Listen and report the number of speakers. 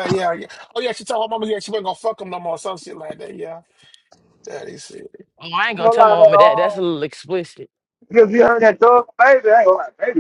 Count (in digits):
3